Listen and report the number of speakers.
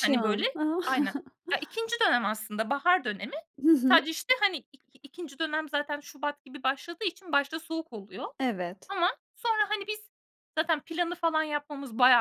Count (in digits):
2